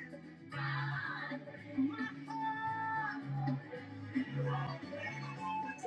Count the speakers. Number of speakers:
0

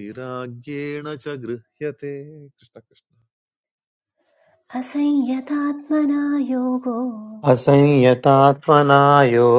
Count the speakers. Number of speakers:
3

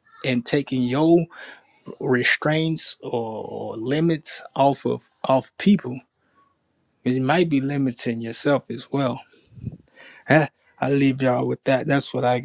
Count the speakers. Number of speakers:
1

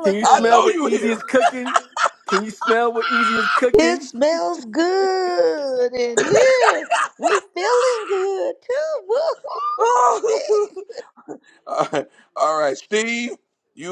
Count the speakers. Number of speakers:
3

